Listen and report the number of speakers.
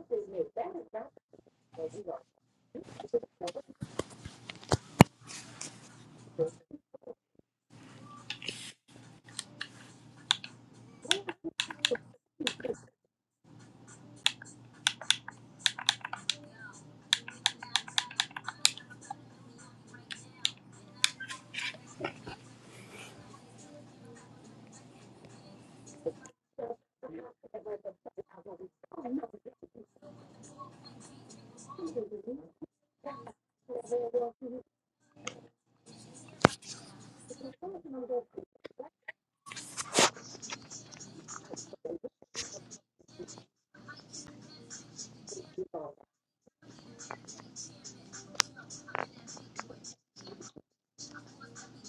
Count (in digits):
0